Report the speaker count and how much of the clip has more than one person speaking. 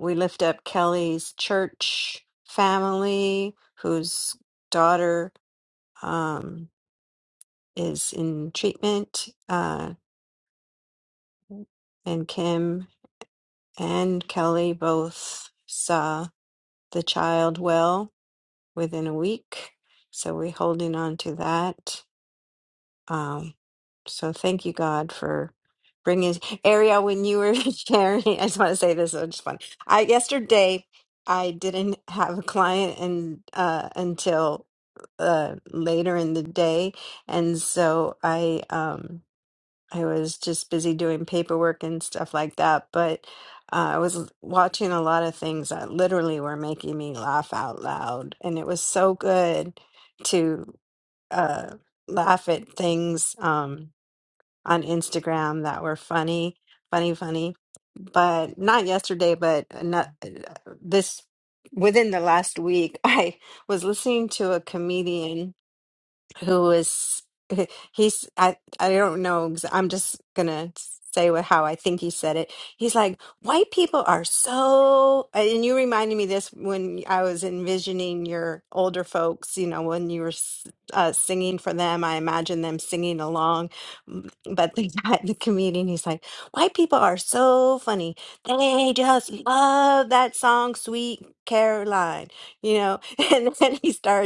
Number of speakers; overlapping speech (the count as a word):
one, no overlap